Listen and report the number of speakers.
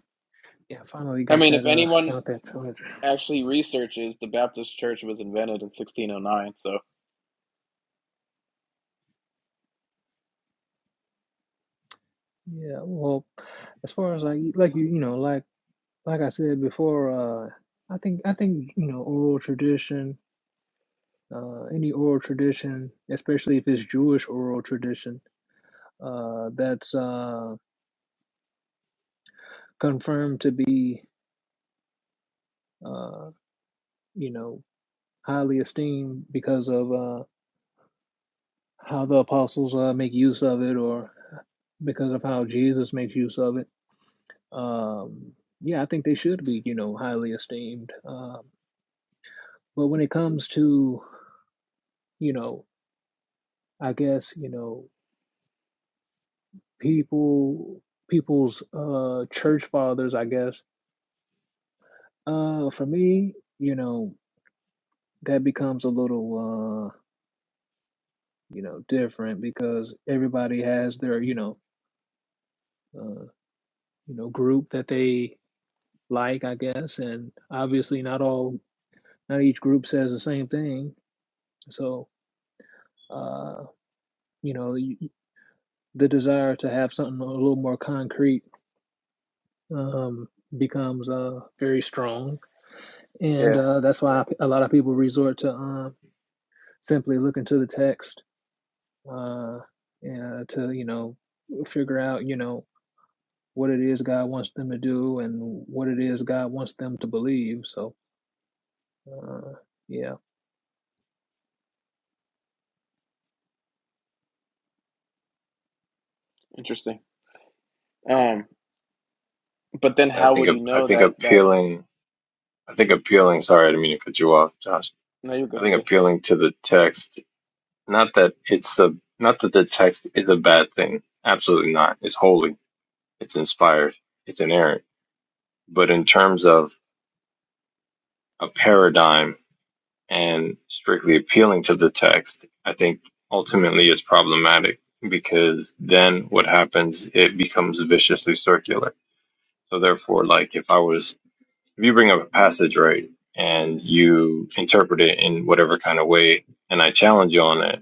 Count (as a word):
three